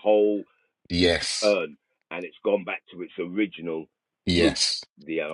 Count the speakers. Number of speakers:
two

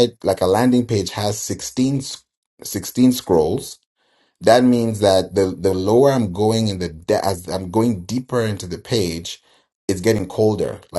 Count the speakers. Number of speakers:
one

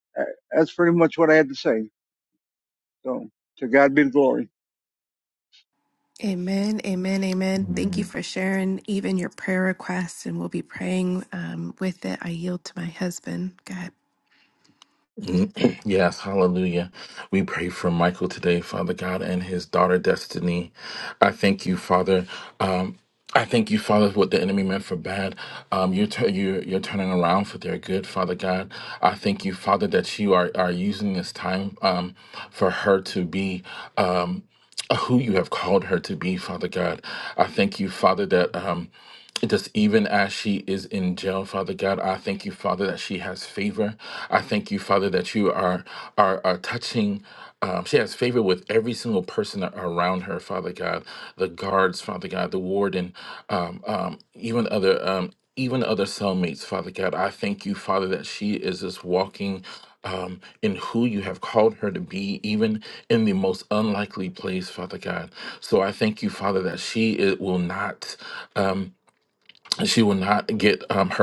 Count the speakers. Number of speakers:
three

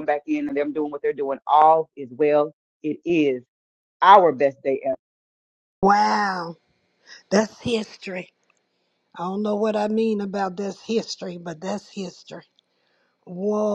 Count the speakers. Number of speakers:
two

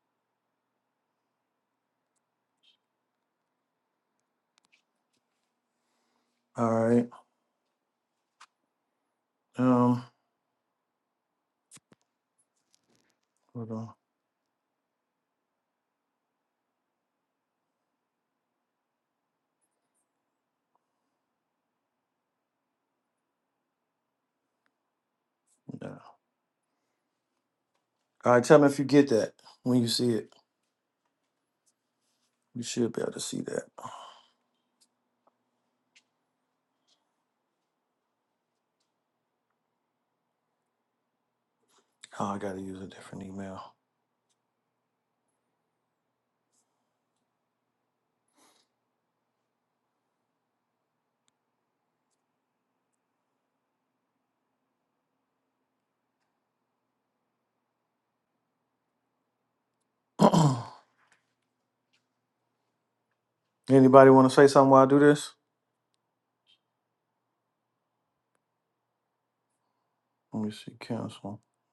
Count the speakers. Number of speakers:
one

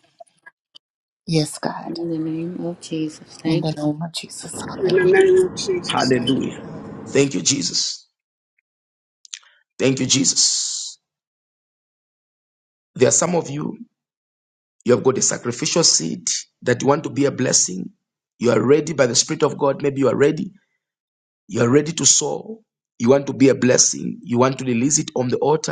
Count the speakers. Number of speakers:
four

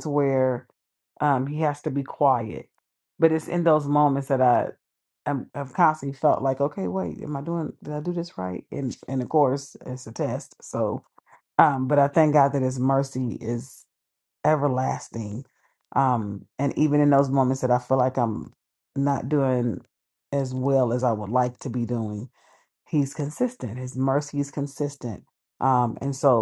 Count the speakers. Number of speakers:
one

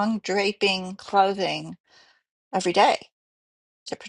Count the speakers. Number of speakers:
one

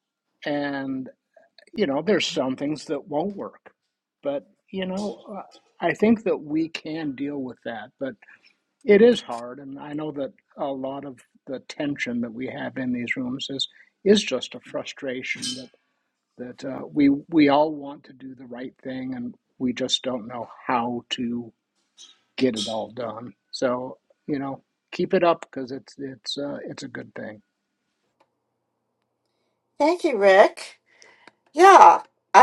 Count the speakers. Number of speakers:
two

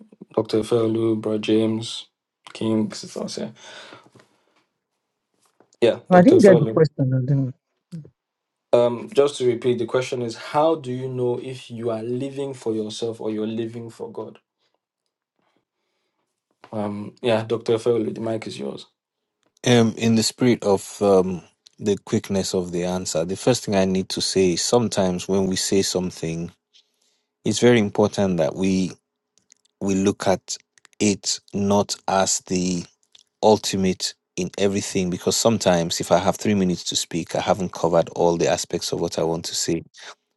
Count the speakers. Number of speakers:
three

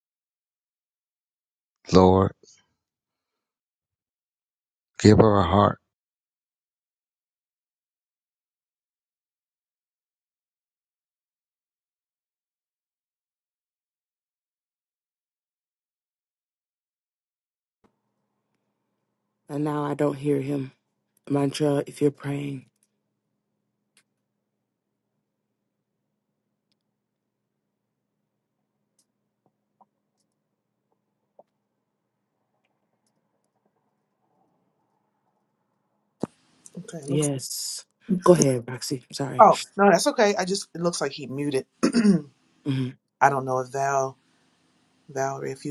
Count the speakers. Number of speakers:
three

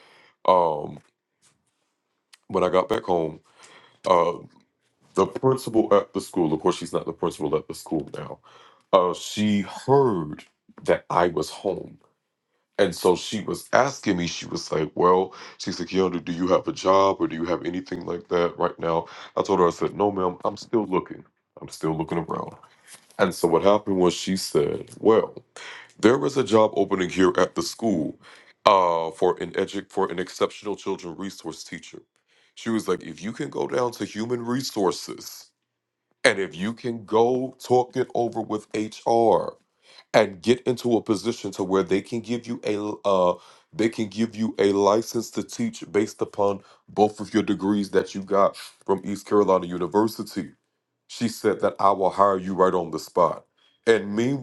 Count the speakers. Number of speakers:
one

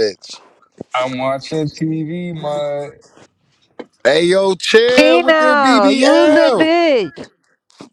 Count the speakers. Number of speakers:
three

